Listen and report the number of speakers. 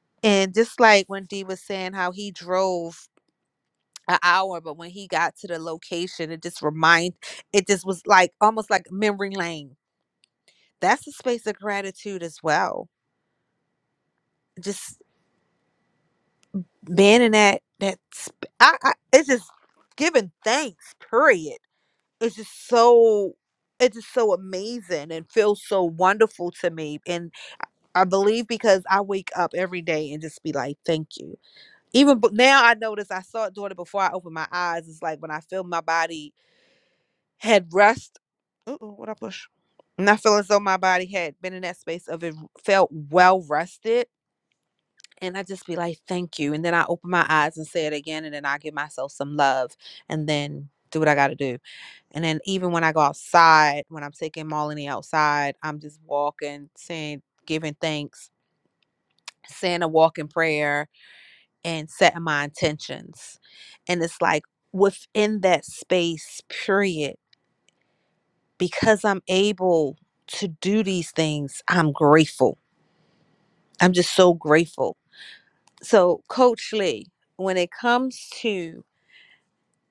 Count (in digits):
1